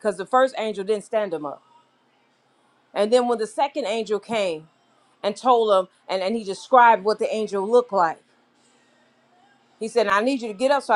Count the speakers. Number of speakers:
1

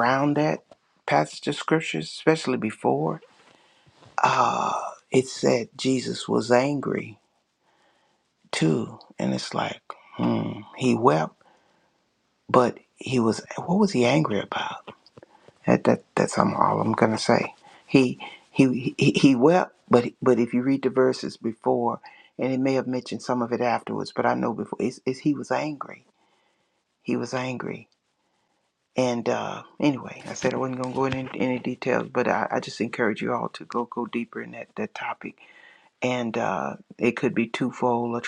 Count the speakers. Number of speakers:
1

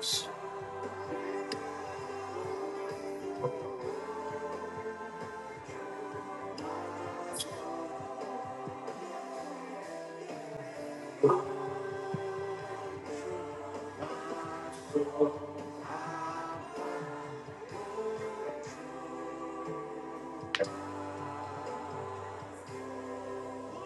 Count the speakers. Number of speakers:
0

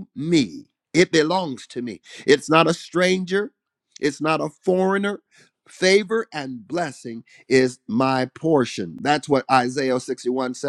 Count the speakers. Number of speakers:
1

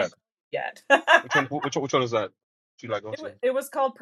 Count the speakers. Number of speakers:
2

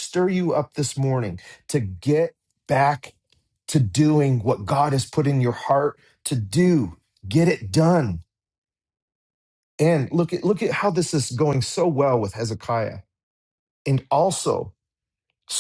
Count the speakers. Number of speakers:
1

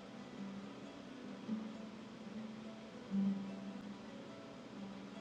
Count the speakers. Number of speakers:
0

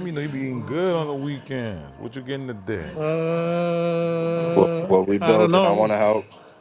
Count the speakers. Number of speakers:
3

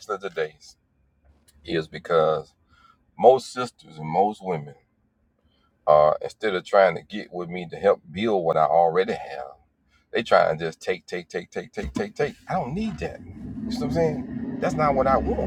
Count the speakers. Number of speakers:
1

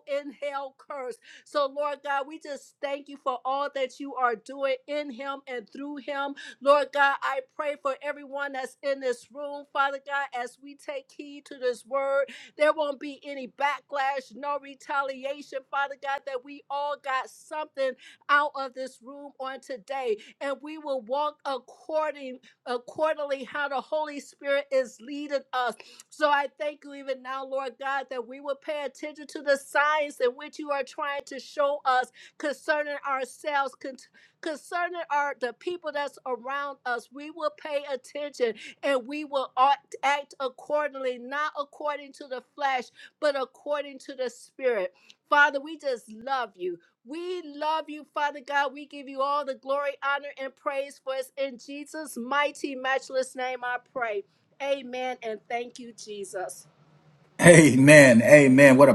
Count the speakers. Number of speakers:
2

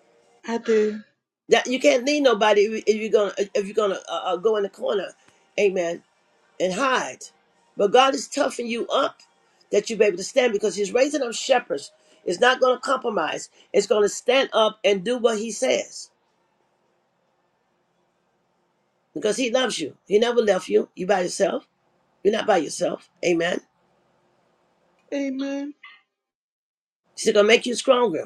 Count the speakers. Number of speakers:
2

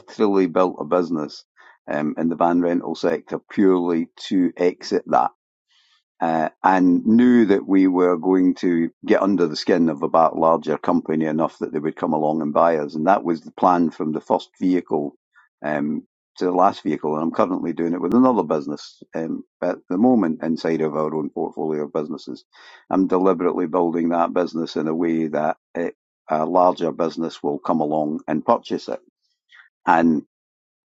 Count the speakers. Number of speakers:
1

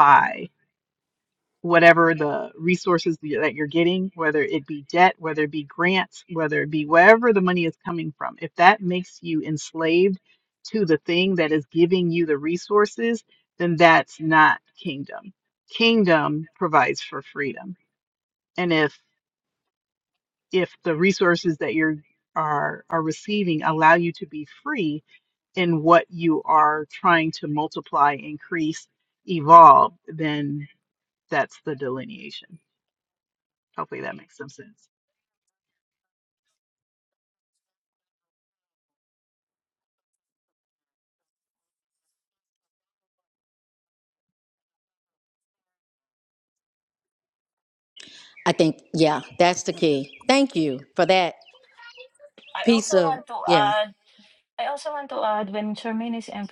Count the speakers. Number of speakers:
3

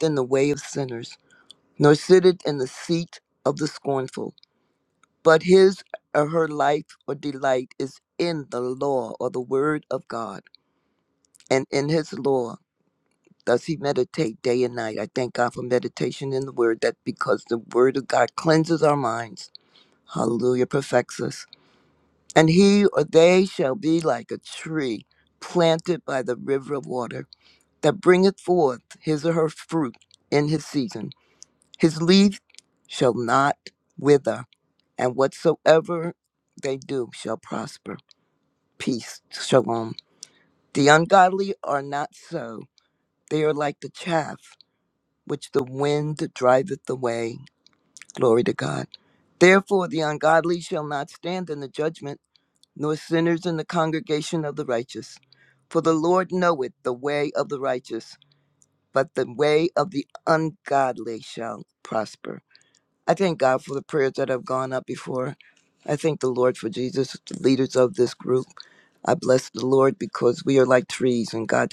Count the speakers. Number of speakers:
1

